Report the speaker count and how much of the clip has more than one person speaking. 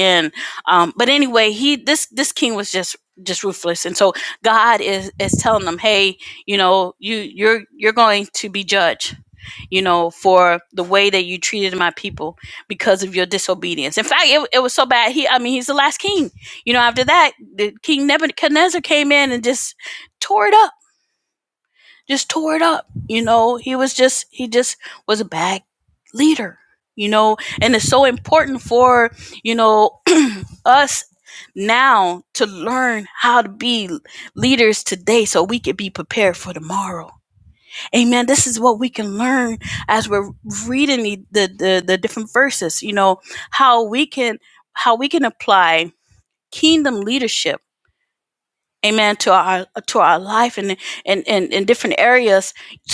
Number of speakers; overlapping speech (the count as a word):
one, no overlap